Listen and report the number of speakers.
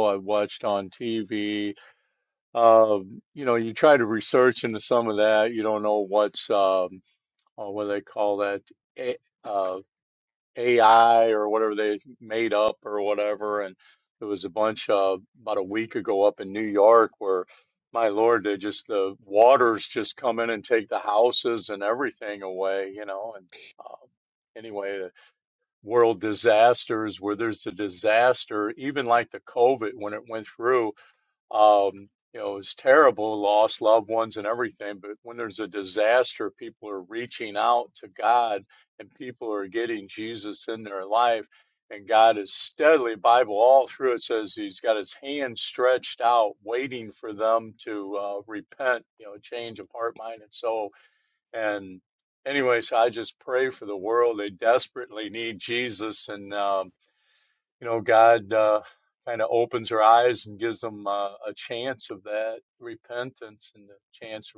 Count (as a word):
one